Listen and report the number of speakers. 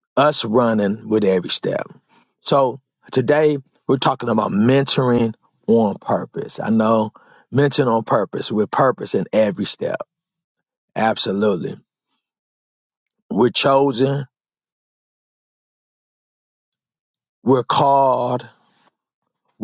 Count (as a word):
one